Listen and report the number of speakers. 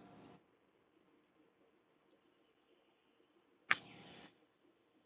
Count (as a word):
zero